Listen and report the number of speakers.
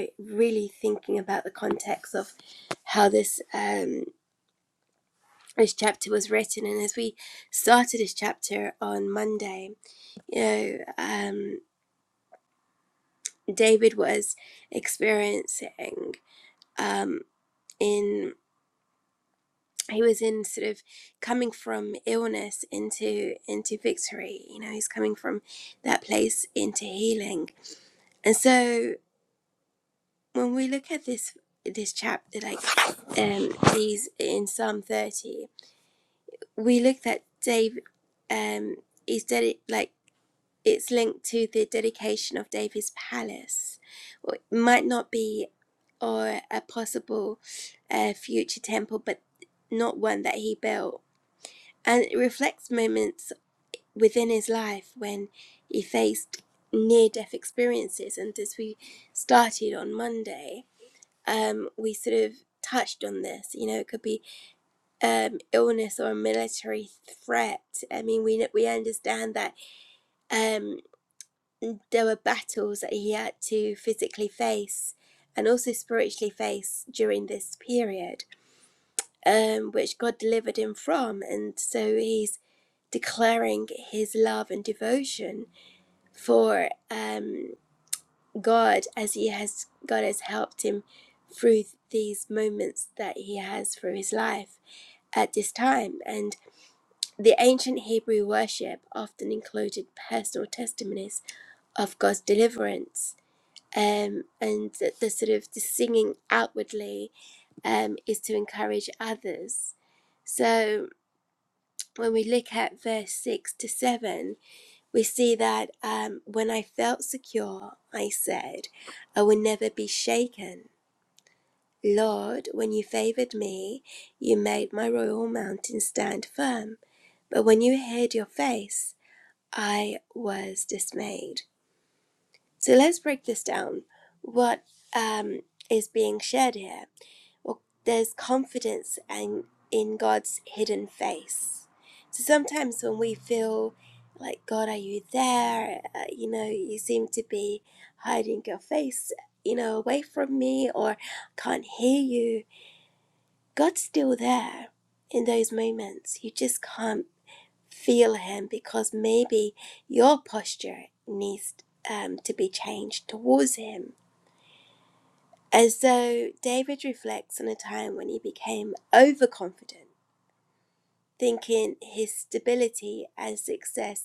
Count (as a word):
one